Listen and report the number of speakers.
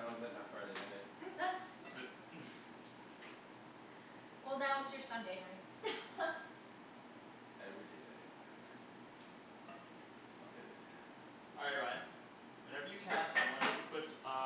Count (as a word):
three